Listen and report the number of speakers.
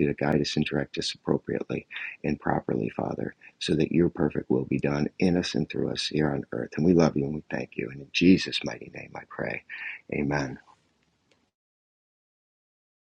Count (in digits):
1